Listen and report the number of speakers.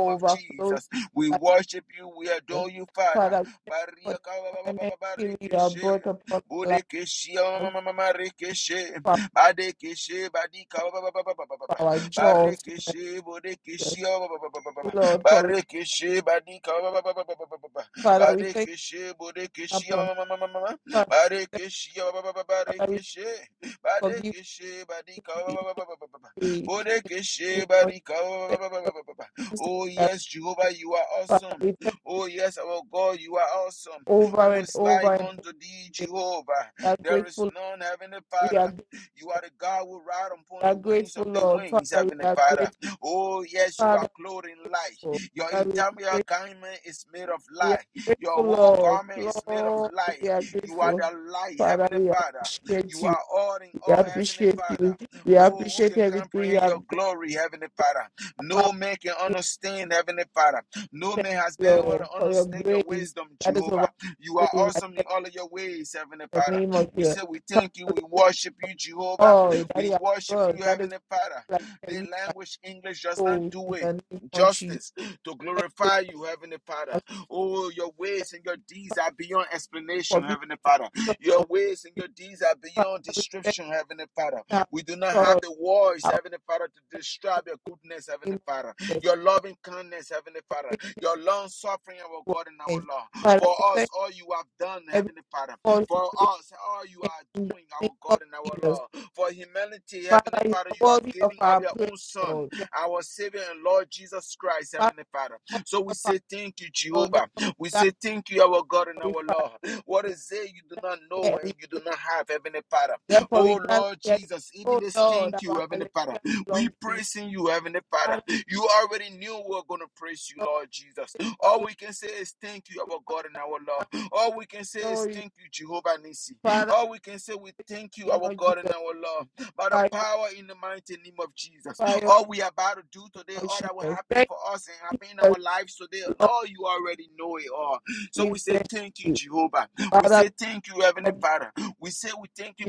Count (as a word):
two